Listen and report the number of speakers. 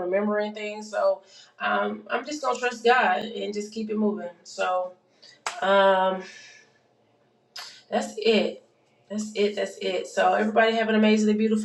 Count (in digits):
1